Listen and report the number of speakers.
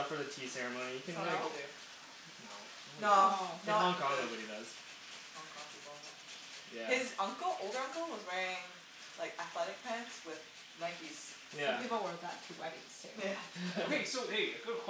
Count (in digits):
4